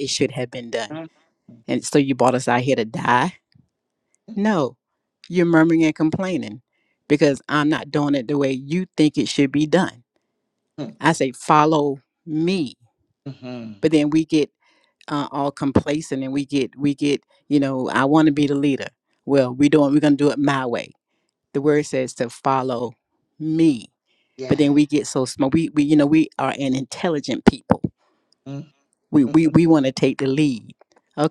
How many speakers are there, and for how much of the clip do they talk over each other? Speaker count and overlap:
two, under 1%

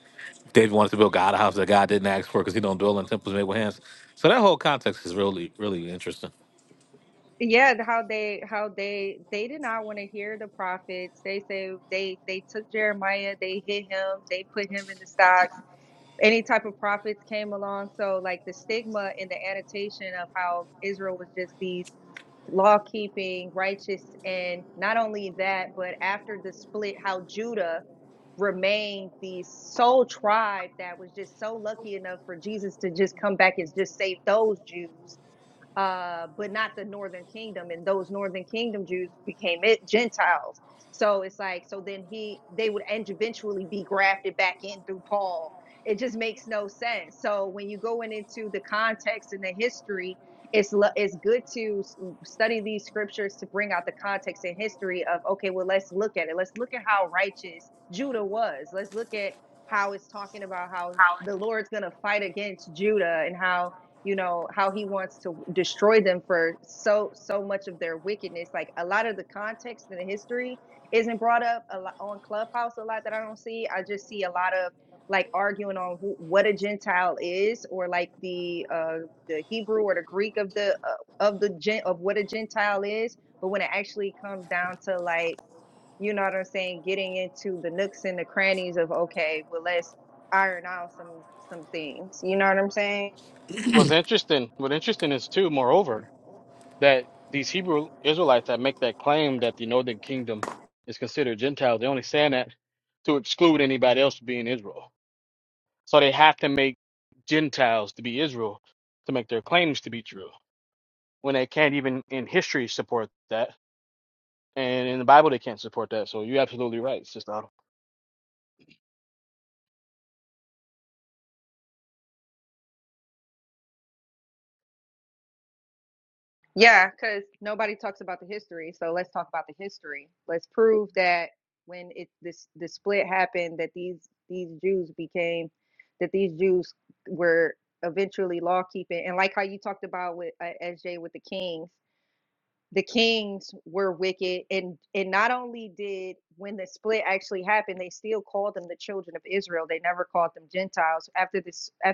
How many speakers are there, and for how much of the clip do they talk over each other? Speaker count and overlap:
three, no overlap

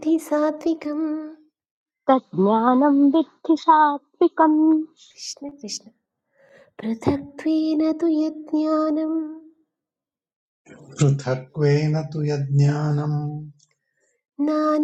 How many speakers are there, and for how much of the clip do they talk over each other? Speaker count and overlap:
three, no overlap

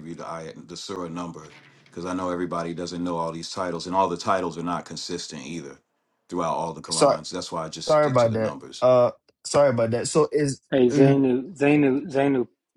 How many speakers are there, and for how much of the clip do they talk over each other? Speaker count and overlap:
three, about 12%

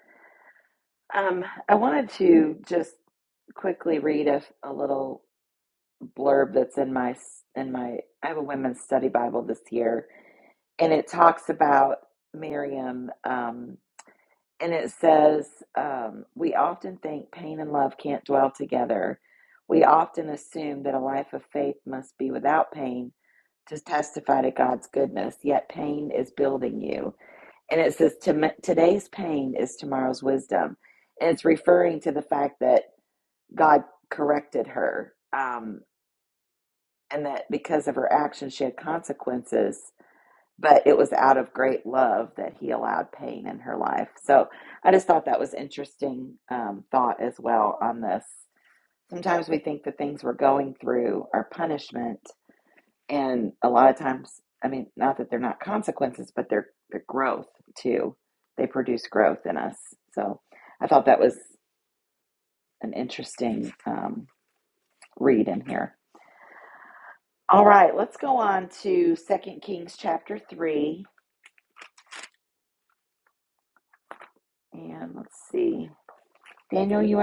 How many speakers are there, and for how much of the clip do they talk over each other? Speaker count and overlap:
one, no overlap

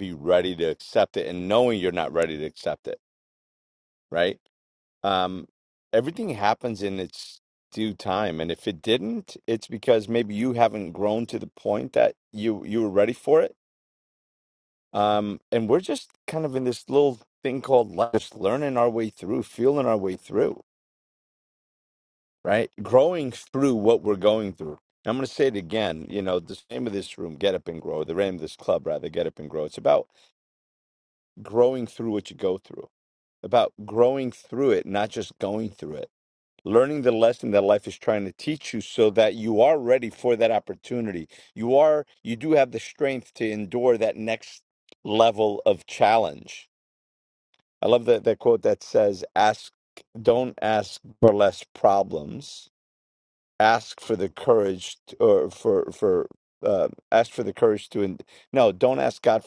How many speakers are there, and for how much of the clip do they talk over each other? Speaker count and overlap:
one, no overlap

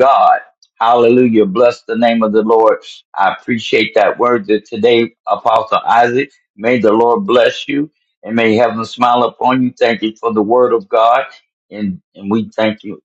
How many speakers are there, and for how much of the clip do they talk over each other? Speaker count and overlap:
one, no overlap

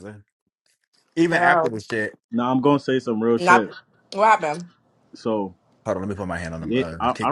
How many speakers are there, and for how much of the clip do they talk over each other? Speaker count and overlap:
three, about 20%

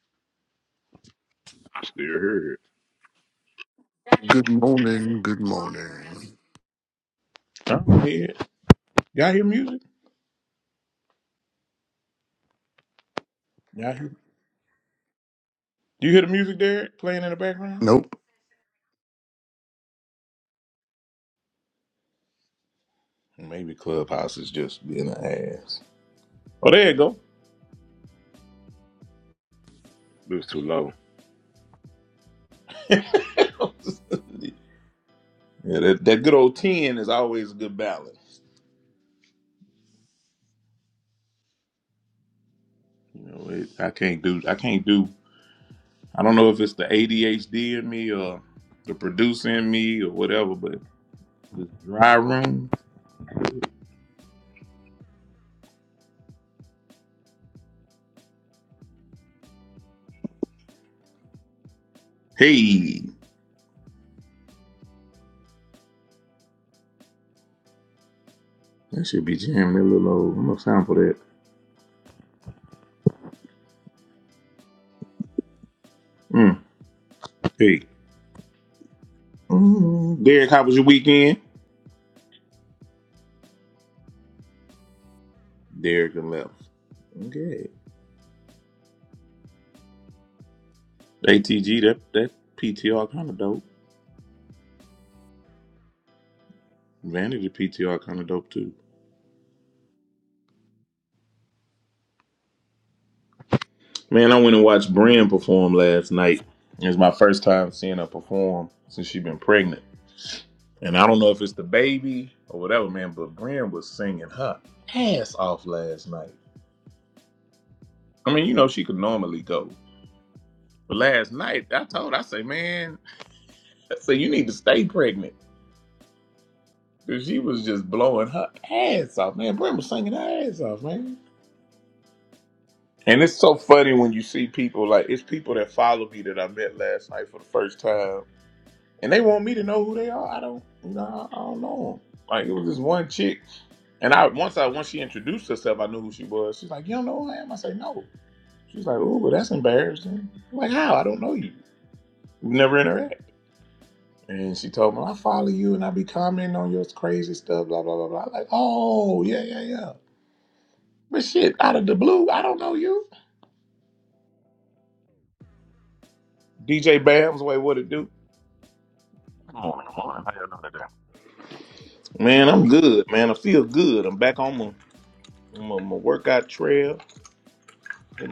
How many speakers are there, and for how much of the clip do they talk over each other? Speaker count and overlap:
four, no overlap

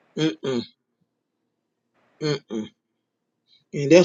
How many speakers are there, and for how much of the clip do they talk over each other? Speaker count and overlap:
one, no overlap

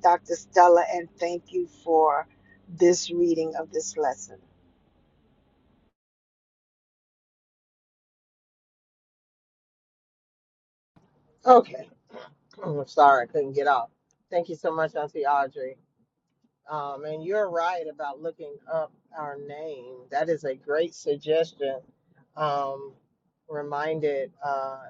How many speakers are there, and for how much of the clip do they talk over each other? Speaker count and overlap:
two, no overlap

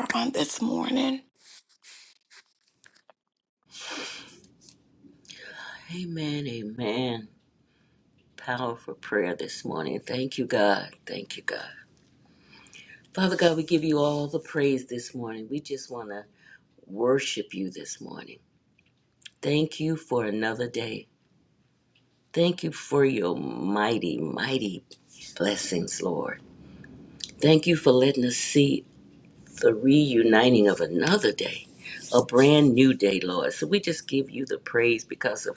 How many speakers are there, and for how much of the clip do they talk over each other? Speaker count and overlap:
two, no overlap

